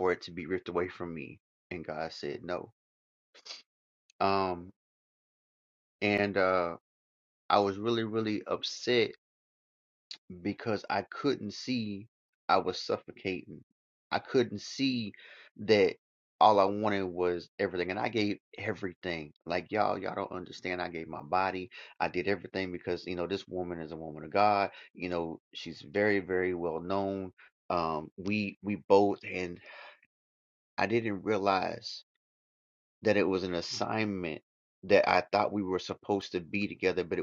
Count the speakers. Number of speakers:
one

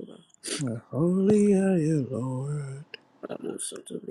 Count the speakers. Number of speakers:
two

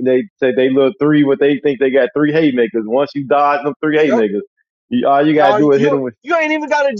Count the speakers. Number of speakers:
two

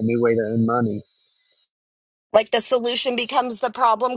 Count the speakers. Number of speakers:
two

